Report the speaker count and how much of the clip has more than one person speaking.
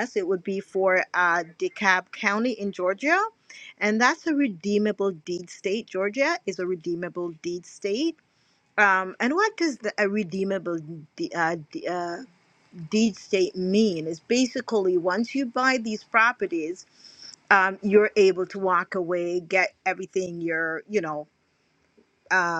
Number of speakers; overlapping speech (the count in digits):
1, no overlap